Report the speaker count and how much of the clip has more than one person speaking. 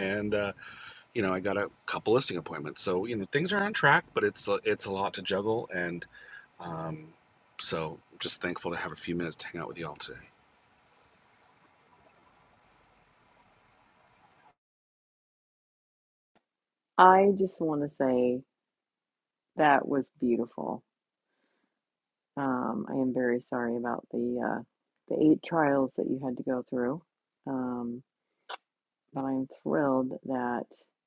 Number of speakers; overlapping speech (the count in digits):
2, no overlap